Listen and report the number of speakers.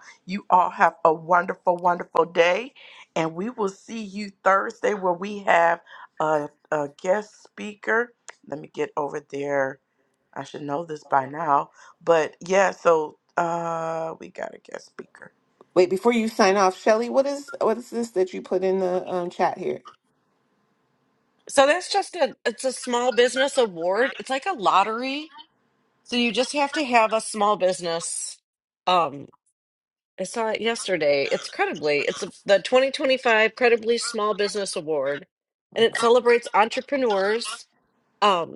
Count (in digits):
3